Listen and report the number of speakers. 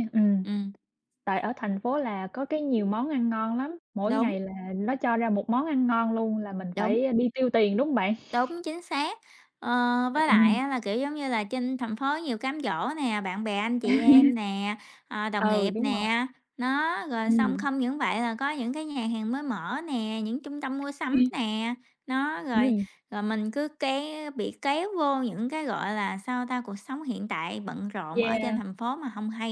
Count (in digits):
2